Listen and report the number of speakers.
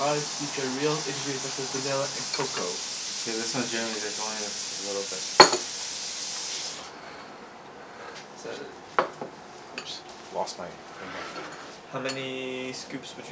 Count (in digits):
4